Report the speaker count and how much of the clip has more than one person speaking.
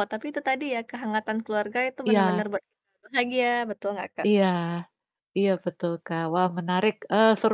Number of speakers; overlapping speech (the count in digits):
2, about 5%